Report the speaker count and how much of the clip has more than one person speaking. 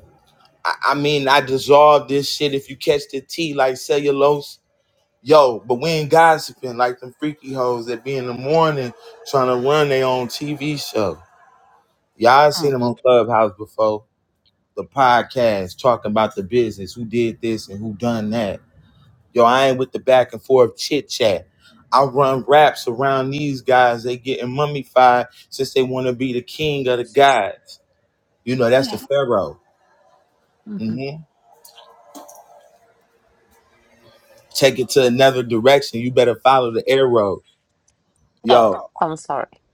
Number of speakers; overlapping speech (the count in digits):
2, about 2%